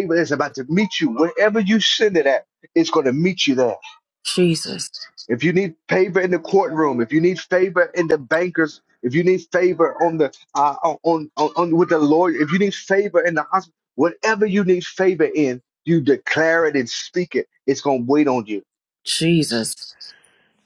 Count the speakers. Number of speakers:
two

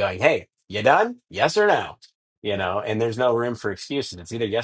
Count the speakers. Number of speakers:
one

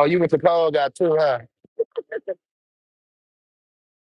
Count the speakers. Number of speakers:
one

